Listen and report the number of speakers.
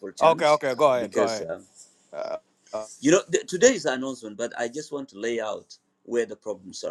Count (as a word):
two